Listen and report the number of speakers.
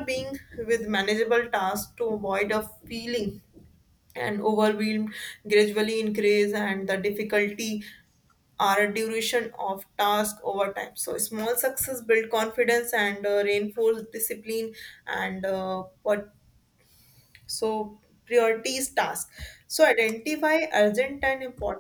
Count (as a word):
one